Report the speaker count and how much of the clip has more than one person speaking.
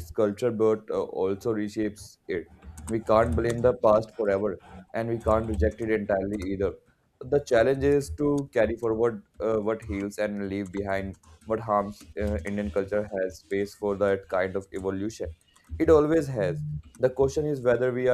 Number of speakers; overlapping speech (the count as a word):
one, no overlap